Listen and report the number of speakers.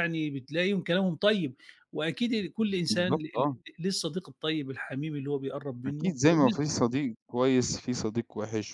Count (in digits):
2